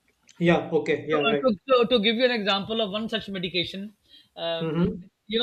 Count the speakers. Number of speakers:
two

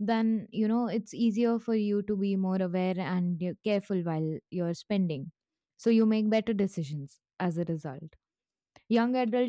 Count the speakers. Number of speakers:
one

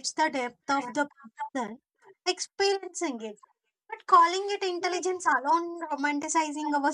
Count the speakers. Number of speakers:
one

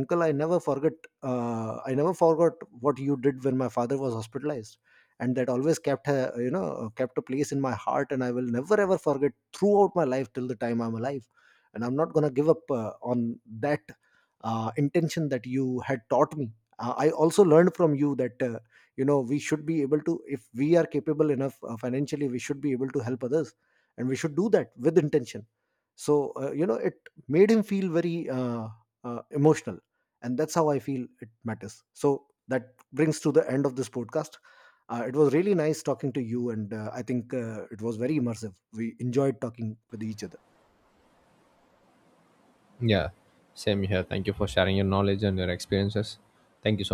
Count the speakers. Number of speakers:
two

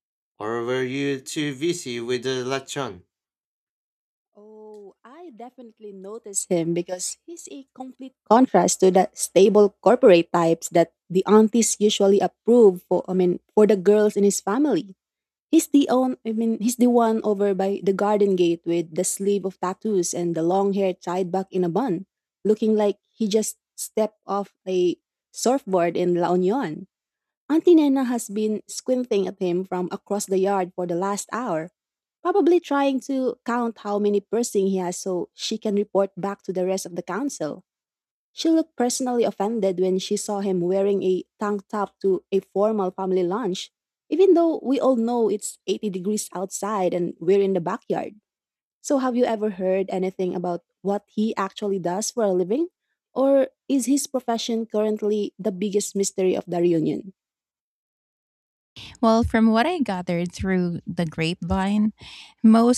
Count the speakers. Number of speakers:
three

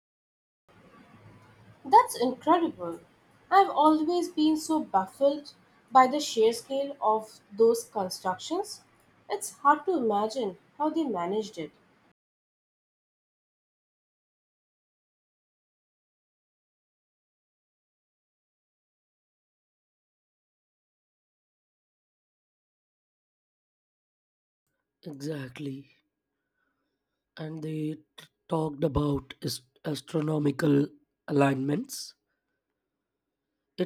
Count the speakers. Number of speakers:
two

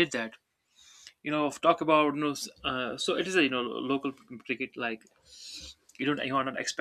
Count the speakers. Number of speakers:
one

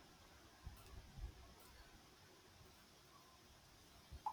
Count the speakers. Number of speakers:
zero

